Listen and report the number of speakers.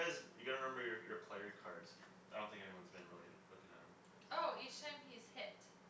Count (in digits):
2